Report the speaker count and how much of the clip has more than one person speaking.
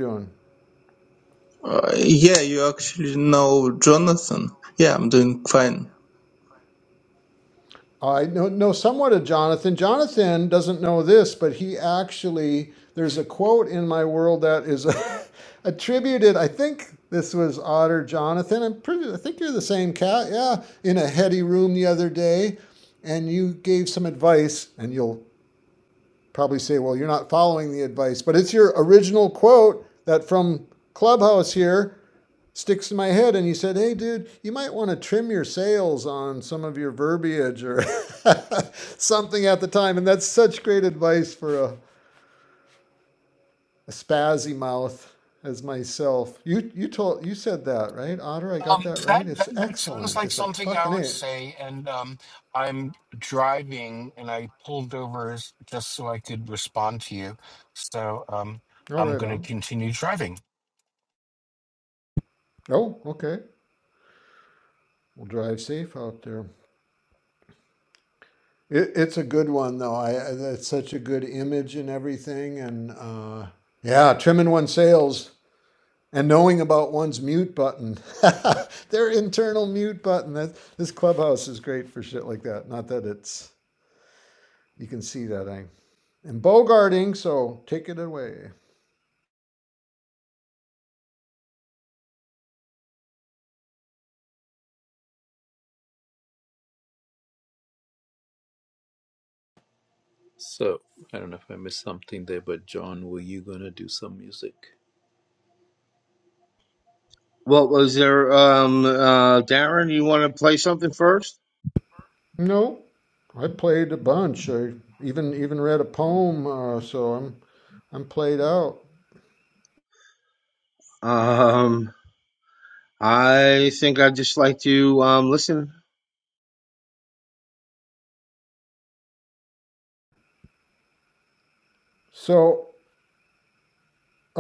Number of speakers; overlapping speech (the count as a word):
five, about 2%